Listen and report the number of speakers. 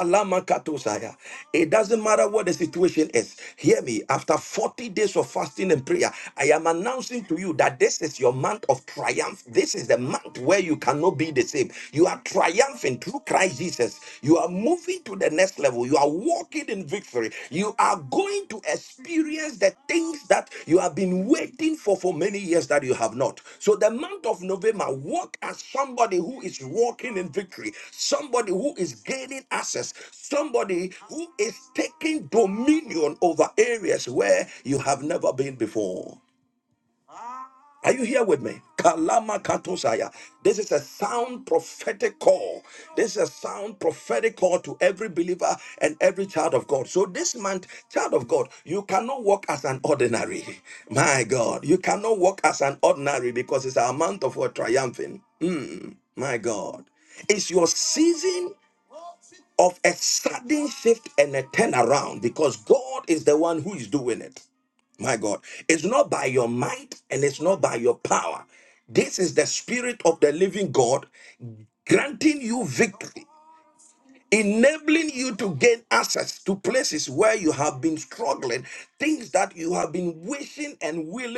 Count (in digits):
1